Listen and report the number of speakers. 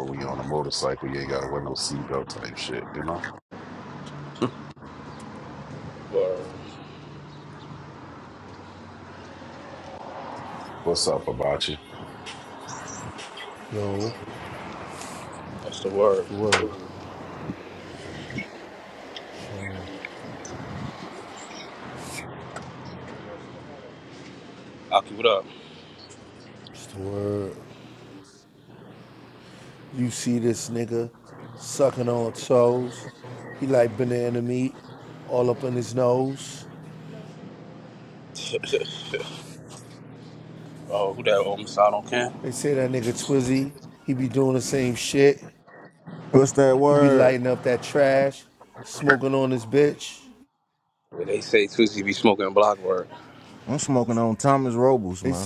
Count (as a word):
four